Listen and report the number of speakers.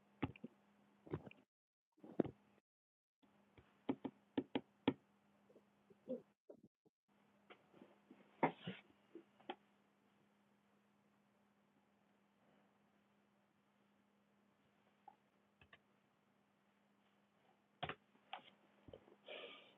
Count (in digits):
0